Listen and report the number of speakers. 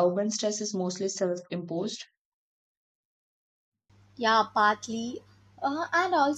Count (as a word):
two